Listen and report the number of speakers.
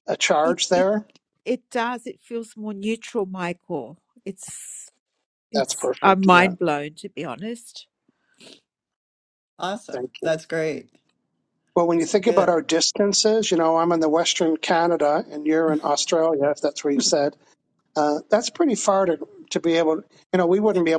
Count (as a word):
three